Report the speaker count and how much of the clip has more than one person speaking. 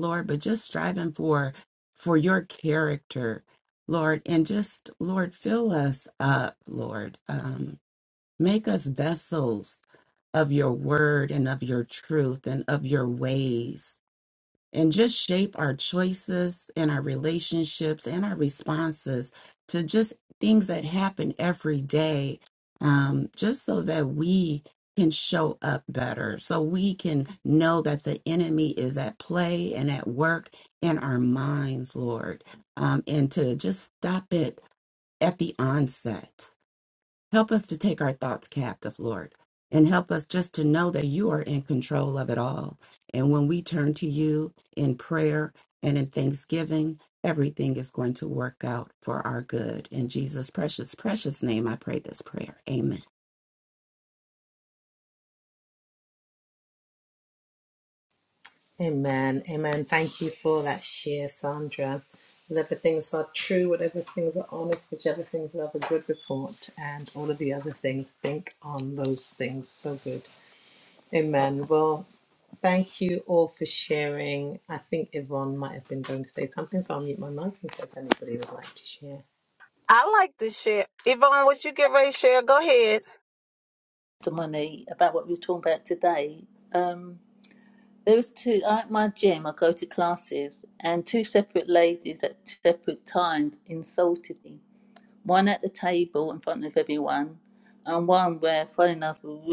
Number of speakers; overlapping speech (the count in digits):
4, no overlap